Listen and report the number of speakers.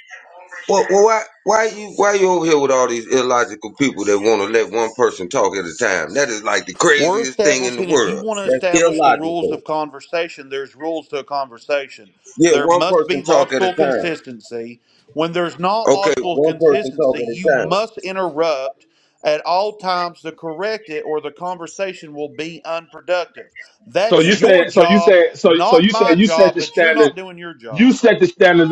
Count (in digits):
3